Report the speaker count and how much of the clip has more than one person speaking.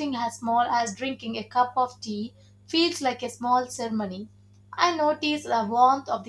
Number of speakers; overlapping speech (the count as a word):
one, no overlap